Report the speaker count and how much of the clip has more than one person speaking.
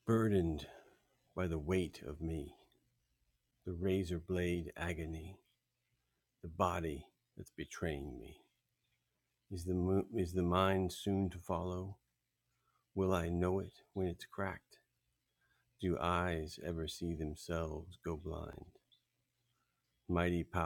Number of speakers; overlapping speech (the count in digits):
1, no overlap